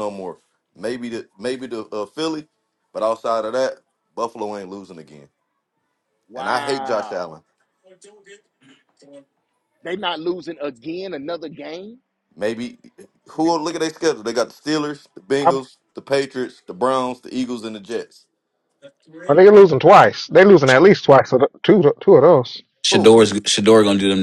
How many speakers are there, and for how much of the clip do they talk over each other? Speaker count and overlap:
4, about 5%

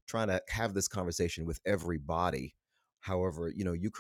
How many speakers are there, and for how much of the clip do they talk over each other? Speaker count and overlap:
1, no overlap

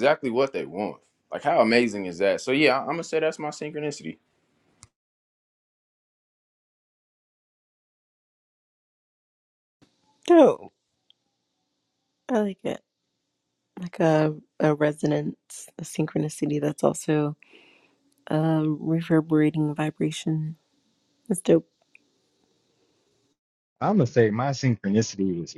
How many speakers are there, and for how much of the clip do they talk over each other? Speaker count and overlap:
3, no overlap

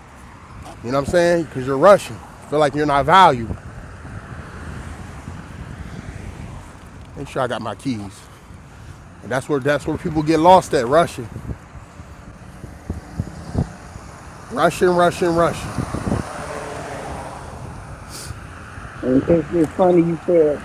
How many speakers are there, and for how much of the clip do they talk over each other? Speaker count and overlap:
2, no overlap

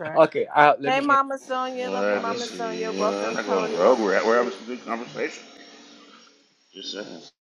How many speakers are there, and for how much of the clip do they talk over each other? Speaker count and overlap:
3, about 43%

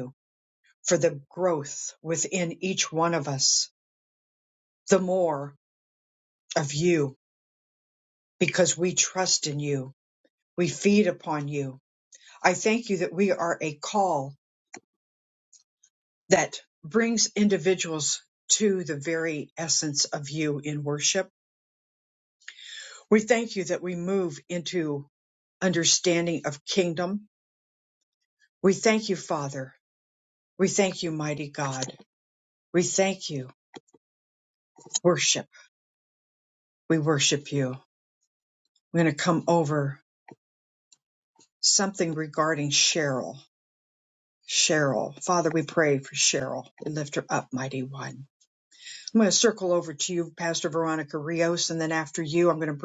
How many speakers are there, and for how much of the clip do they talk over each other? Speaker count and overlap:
1, no overlap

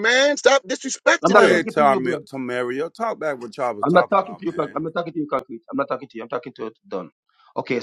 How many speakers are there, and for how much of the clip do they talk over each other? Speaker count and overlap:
3, about 25%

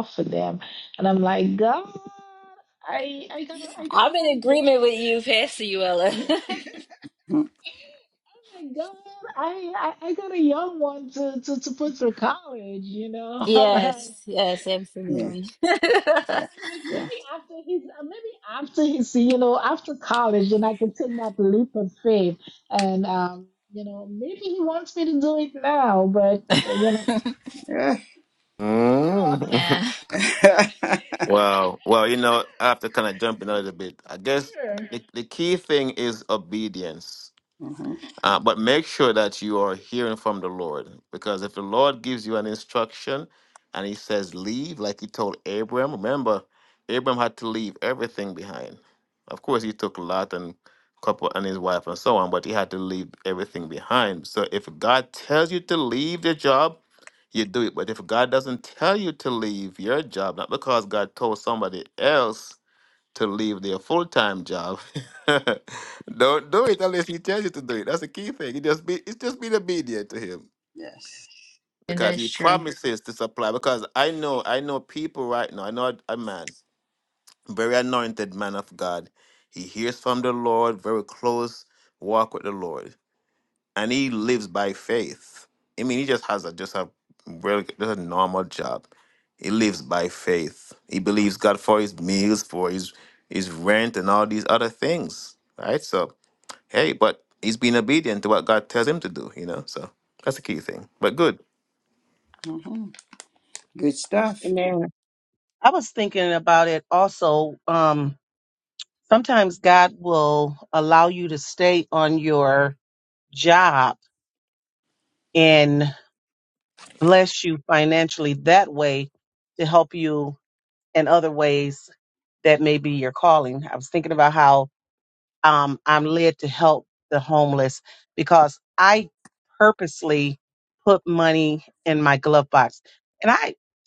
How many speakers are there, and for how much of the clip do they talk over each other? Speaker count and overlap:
5, about 2%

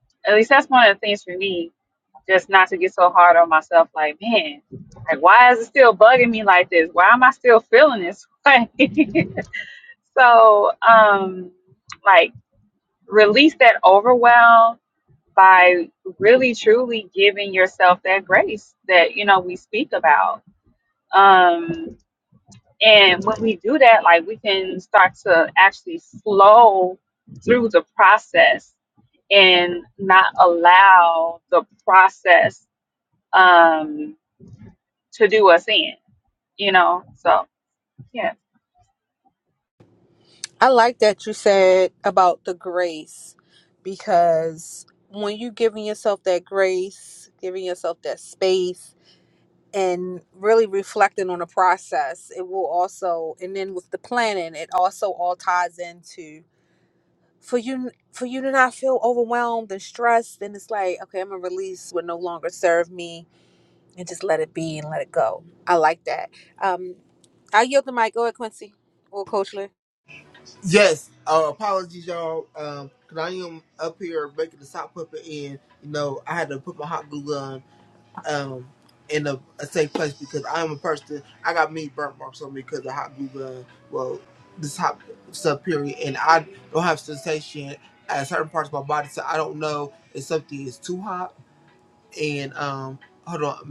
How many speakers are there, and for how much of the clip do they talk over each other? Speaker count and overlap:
3, no overlap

